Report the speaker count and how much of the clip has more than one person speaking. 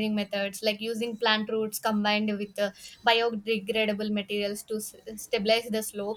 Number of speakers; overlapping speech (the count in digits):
1, no overlap